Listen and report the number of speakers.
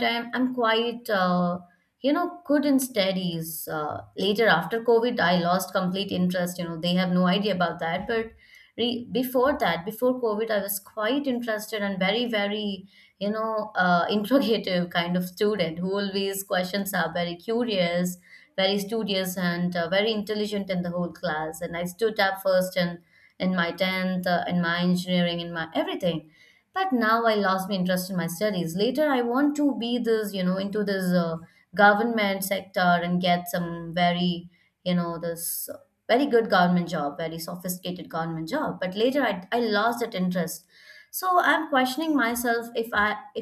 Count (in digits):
1